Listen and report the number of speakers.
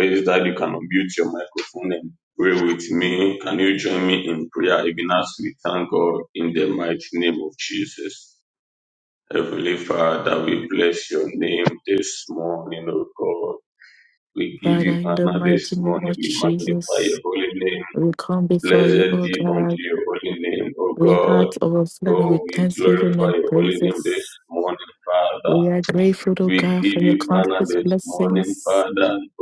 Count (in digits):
2